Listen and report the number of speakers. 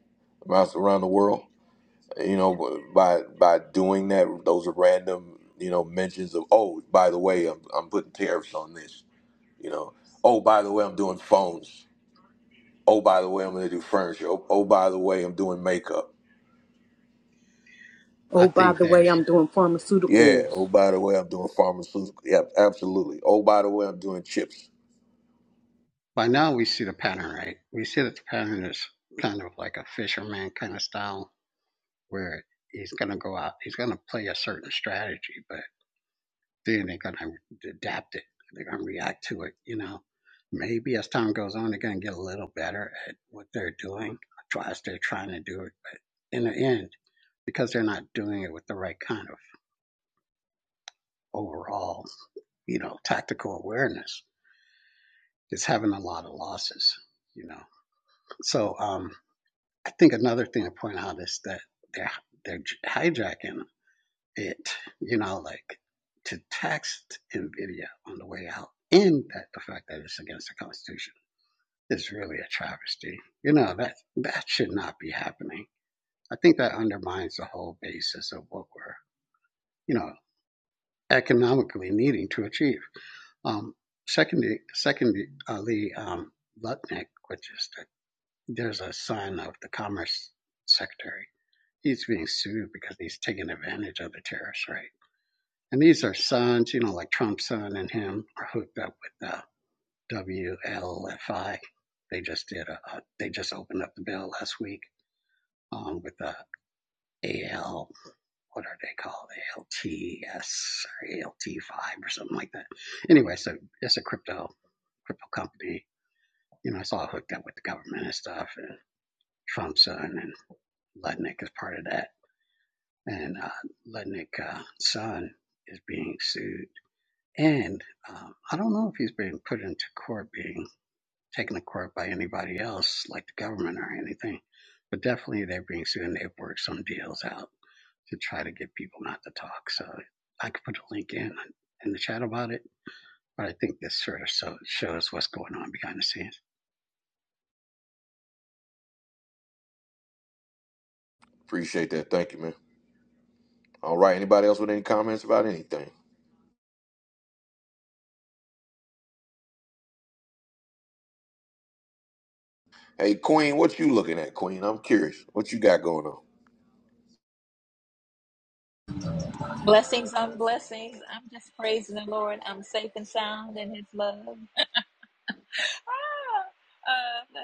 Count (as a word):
four